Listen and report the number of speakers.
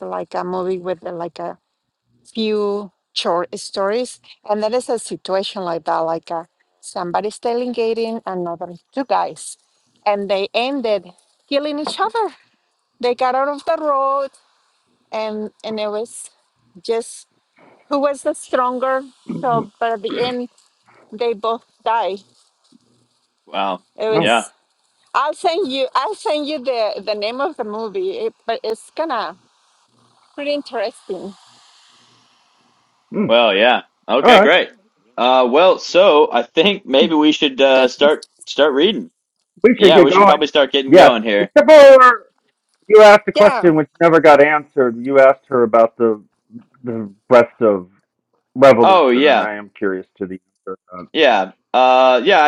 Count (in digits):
3